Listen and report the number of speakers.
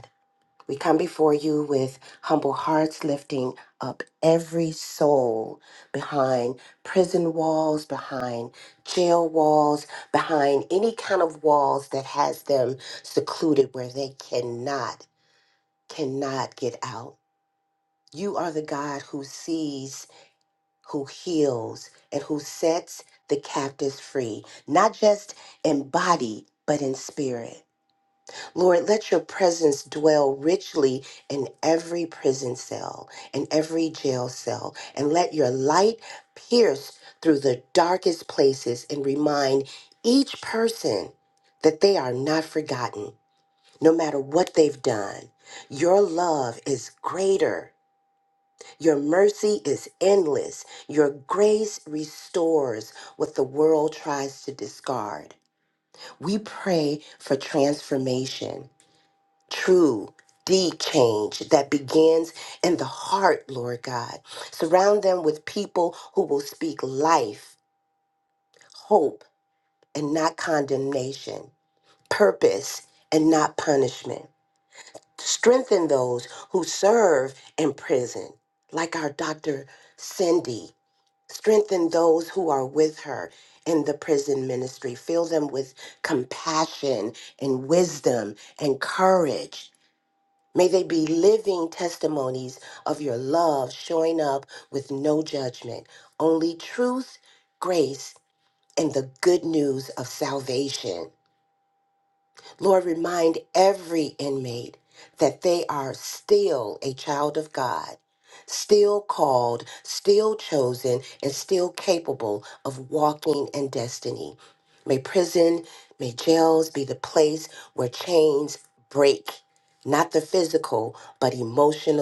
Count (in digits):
1